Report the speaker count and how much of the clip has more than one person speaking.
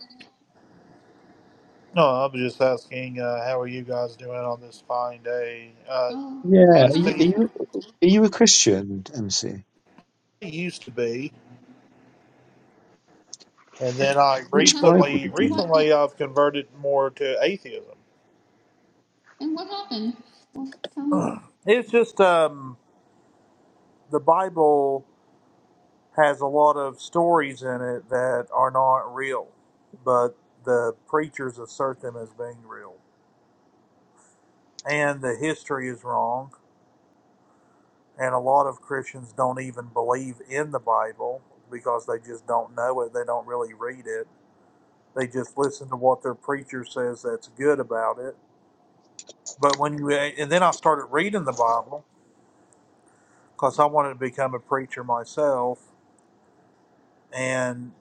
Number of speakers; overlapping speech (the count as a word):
three, about 4%